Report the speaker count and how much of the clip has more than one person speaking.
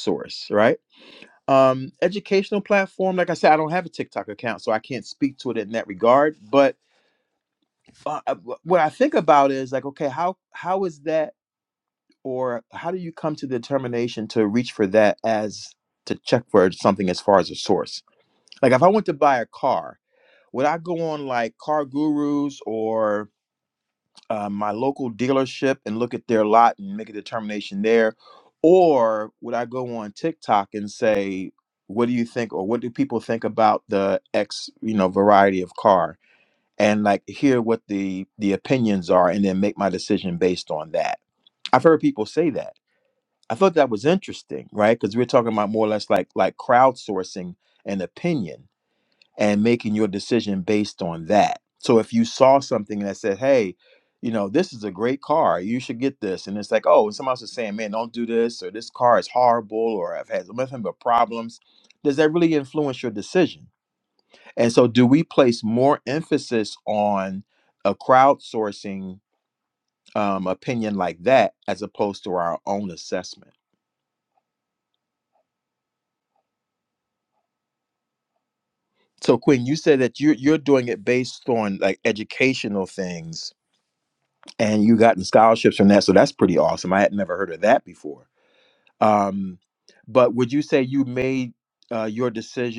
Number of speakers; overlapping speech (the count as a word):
one, no overlap